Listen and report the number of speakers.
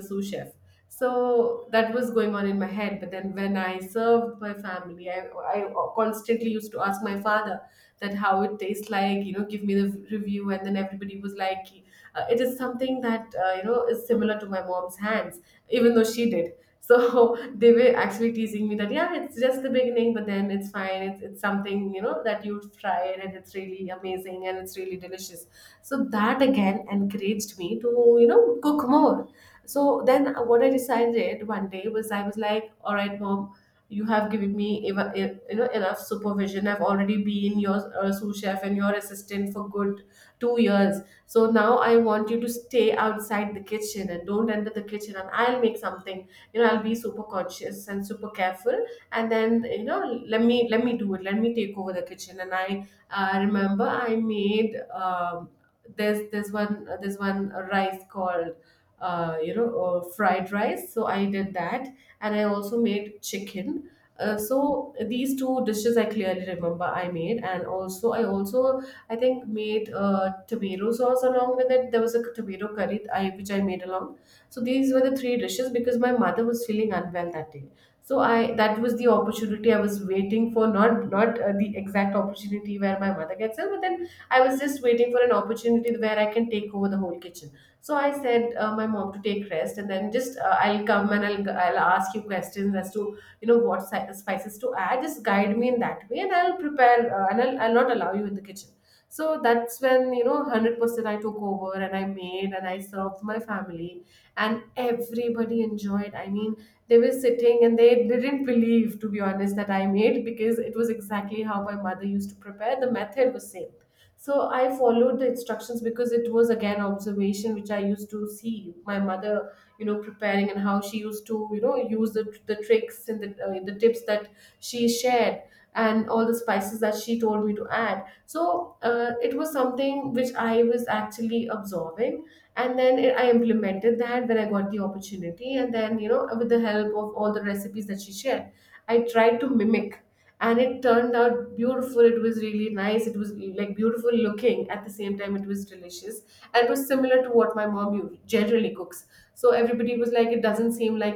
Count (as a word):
one